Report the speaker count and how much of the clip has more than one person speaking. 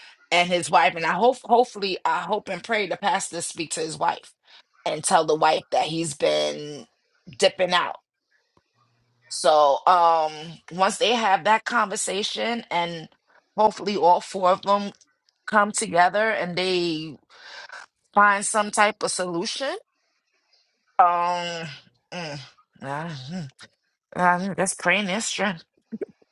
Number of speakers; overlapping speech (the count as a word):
one, no overlap